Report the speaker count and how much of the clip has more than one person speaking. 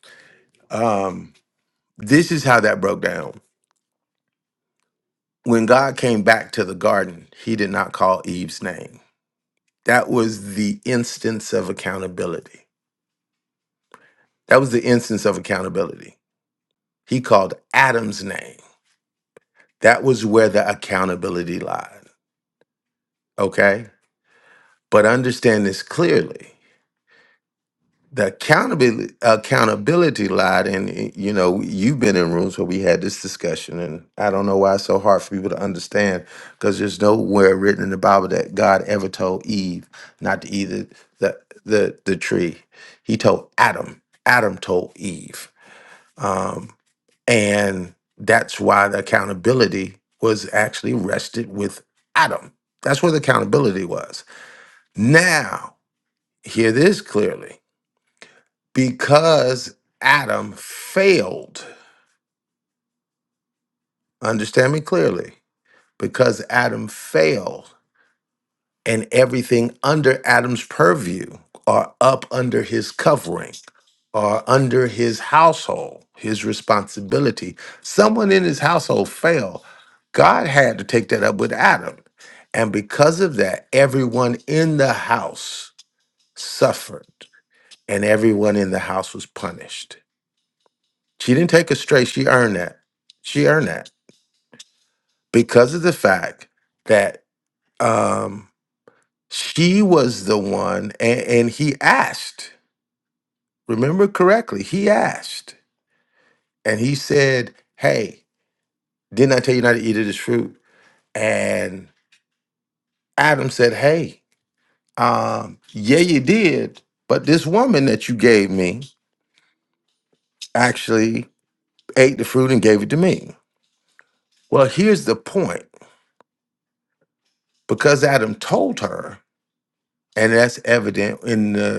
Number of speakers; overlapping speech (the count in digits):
1, no overlap